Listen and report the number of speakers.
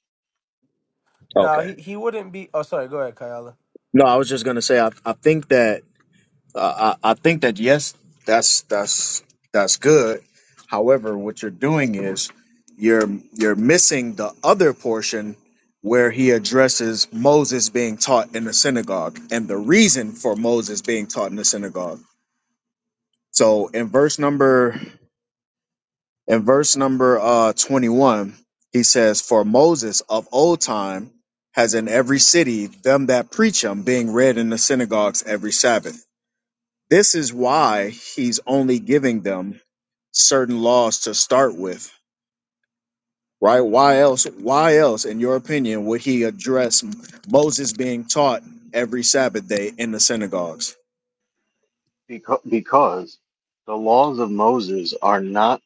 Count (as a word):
three